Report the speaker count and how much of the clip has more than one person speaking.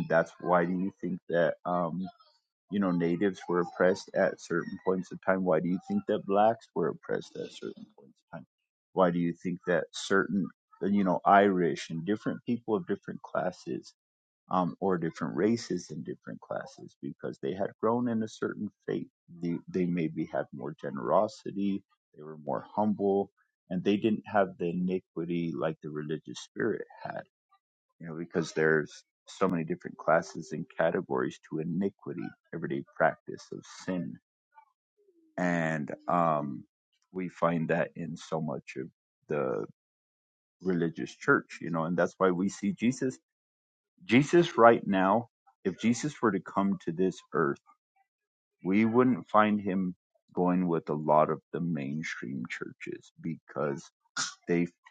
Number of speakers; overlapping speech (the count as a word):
one, no overlap